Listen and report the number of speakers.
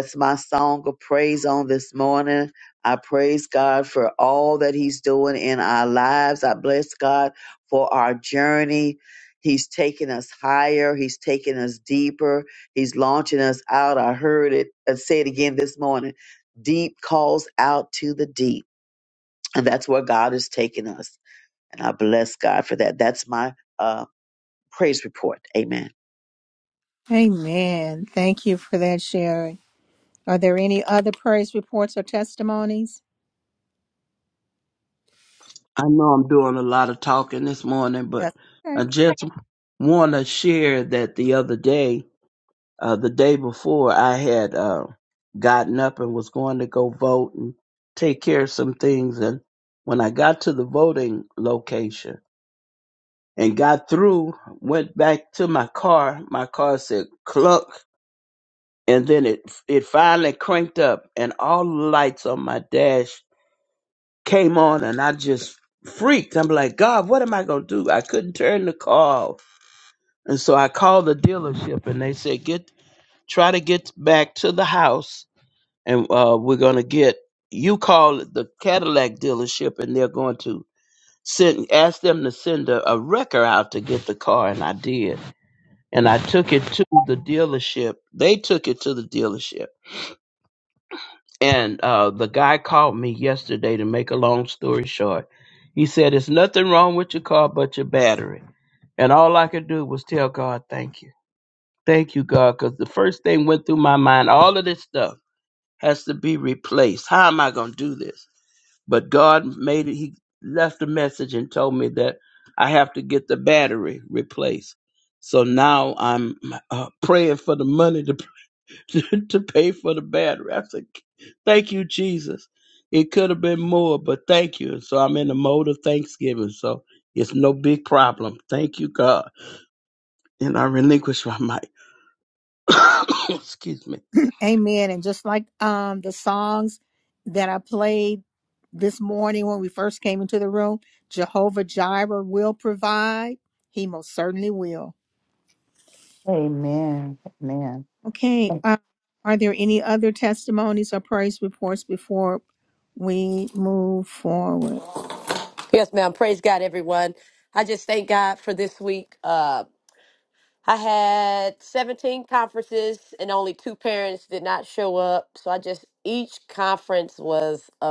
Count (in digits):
5